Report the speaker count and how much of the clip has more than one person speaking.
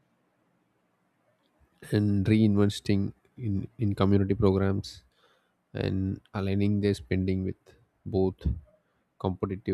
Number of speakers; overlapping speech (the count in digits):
1, no overlap